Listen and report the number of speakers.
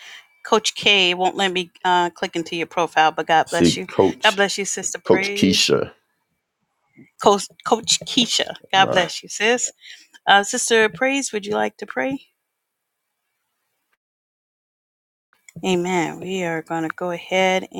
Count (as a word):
two